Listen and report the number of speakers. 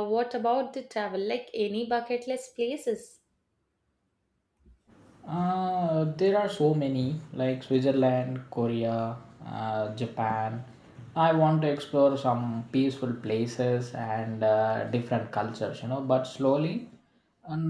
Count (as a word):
two